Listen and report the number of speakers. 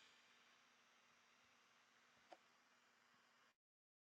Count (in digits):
0